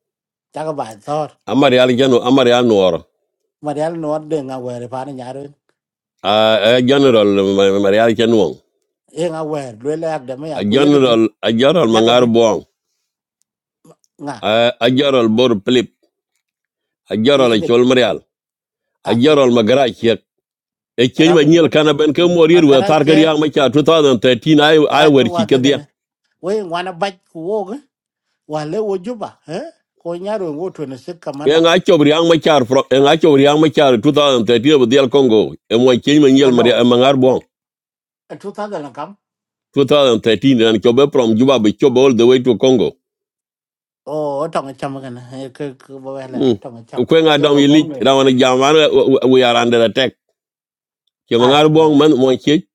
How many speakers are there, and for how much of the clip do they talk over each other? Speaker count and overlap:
two, about 11%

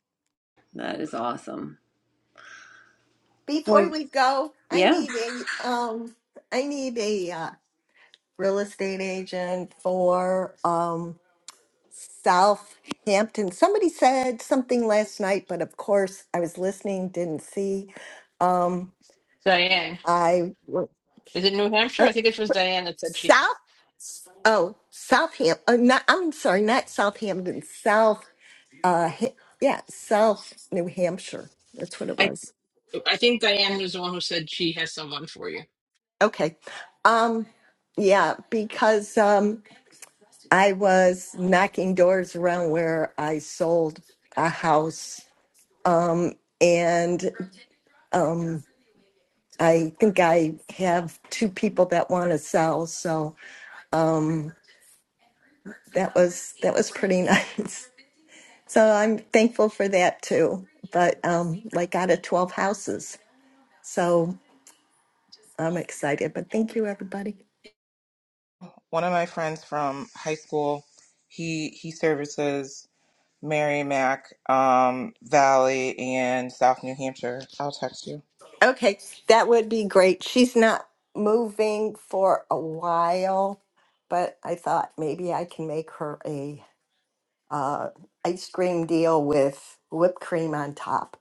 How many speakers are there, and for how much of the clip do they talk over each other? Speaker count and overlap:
four, about 1%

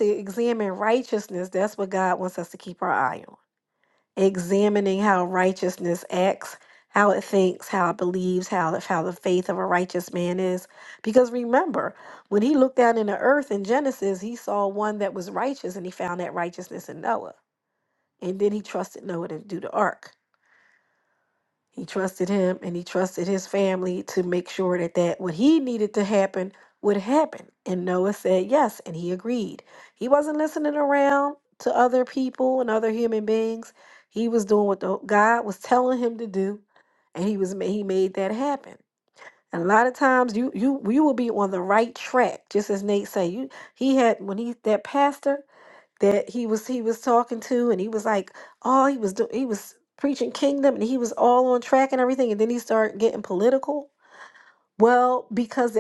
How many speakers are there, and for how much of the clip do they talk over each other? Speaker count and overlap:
one, no overlap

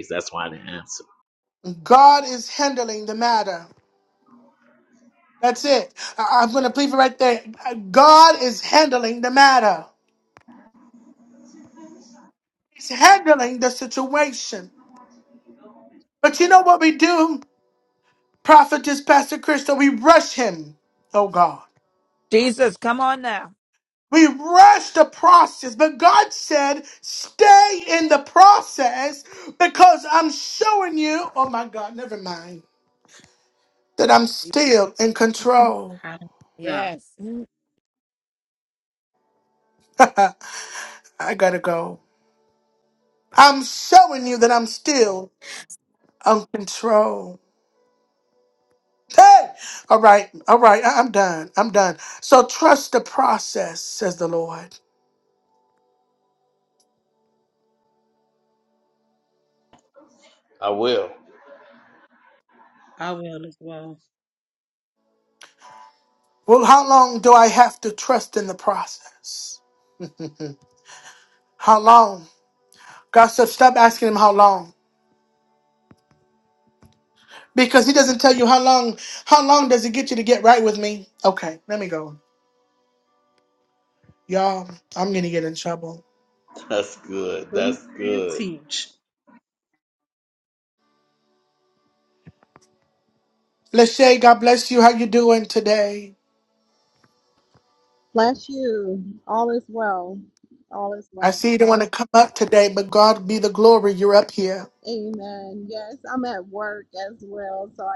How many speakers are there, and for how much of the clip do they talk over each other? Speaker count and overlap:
five, about 1%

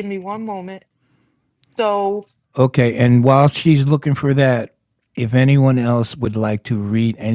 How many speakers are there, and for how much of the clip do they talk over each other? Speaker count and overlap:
two, no overlap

